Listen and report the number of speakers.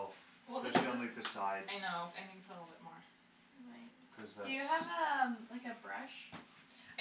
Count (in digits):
3